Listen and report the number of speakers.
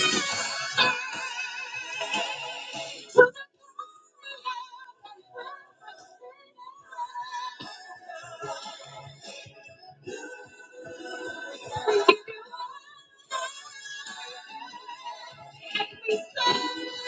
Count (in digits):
0